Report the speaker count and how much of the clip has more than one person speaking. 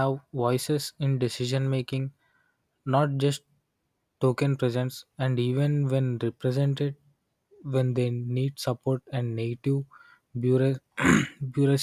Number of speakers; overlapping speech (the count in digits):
1, no overlap